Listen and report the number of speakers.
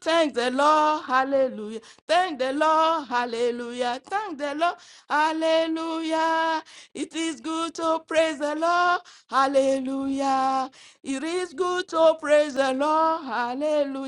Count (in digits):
1